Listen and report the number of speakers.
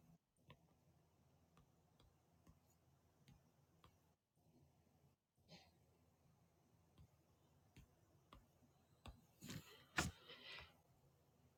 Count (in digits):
0